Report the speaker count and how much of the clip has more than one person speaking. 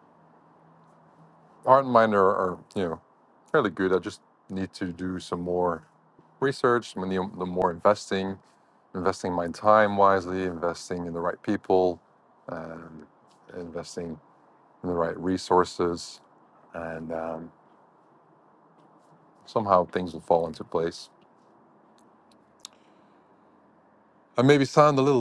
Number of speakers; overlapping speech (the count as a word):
one, no overlap